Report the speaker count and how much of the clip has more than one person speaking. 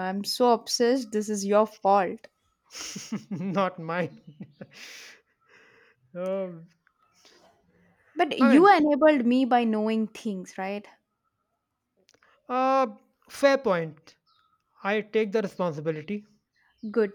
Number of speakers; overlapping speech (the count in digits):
2, about 2%